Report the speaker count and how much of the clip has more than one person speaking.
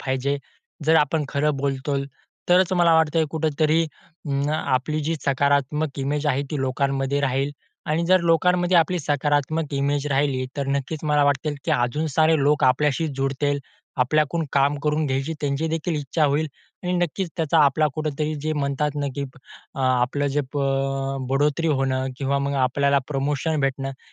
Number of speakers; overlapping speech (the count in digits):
1, no overlap